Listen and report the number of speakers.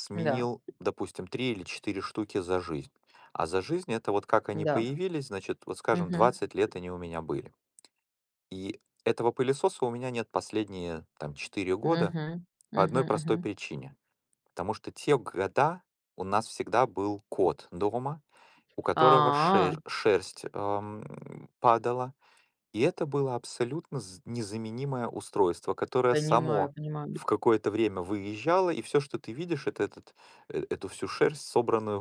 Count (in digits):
2